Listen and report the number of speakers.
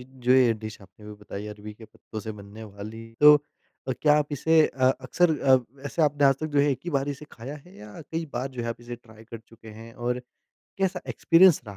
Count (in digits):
1